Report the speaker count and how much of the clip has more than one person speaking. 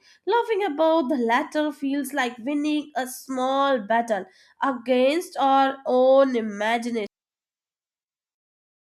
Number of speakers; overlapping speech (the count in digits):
1, no overlap